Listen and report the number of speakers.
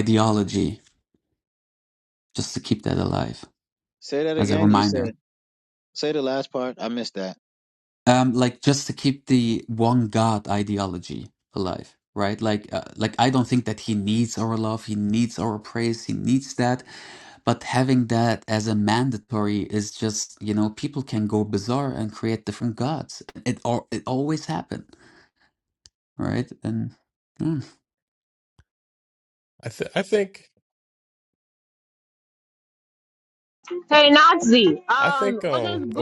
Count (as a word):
four